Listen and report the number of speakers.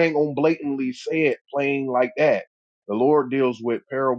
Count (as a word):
one